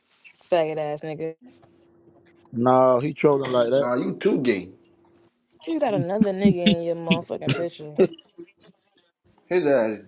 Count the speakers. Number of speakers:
3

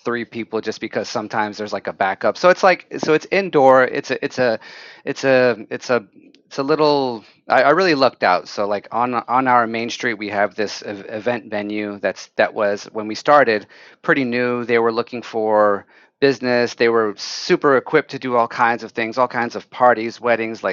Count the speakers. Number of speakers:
1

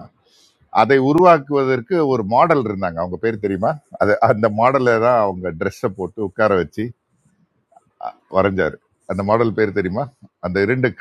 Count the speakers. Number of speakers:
1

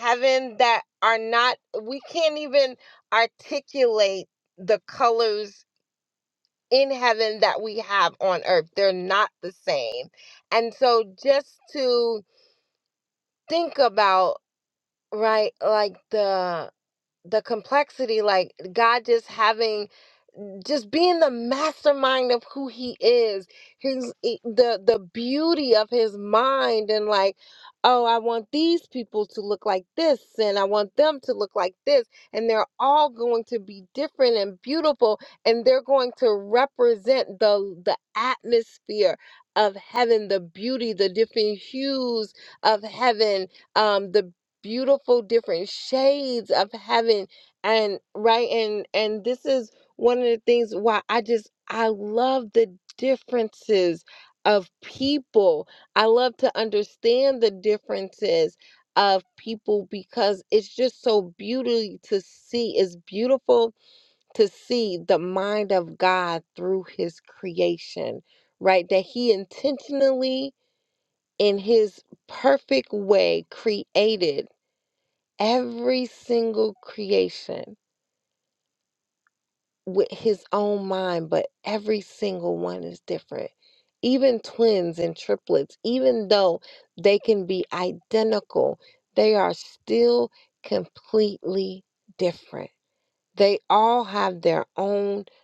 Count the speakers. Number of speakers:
1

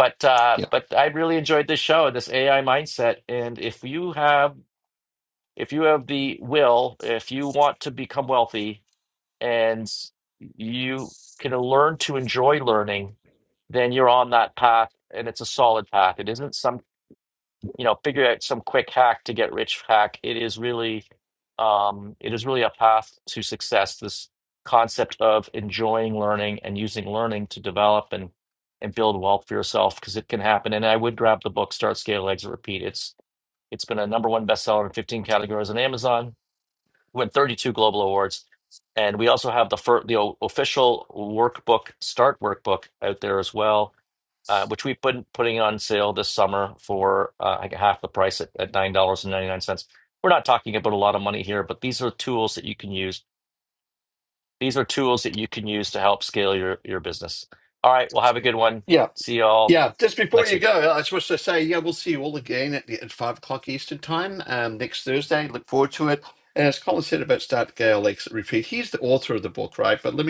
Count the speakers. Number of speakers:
2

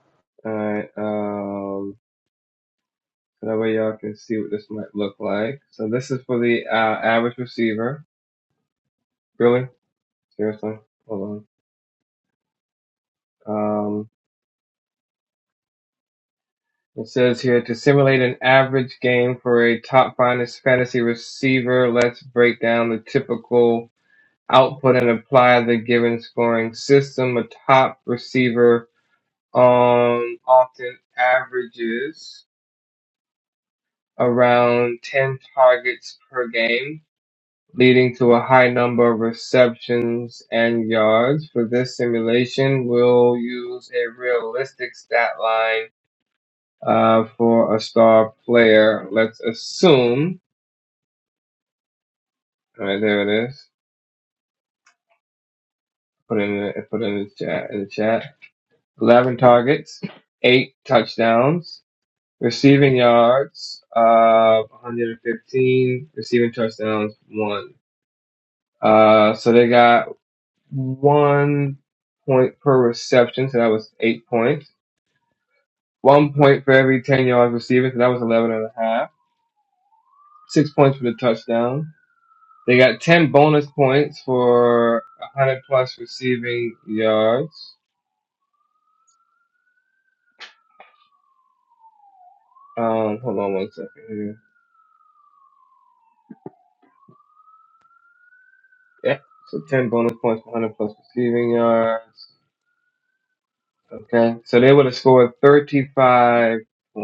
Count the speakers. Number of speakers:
1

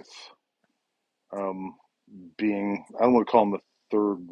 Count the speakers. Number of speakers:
1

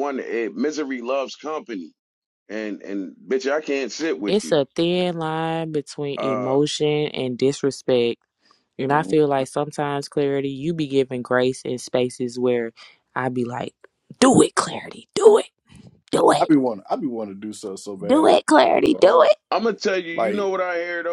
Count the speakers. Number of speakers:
3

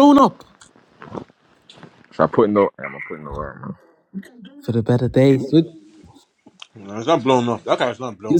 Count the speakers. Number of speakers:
3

